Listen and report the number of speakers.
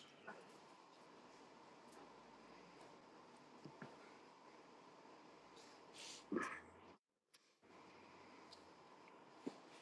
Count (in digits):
0